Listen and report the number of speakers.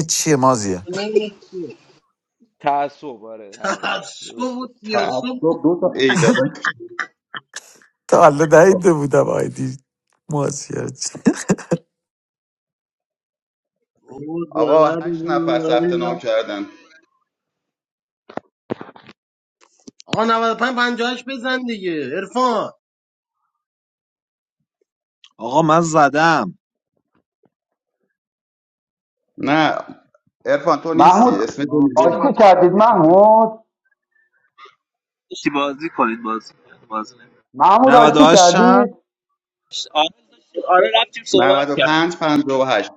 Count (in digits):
7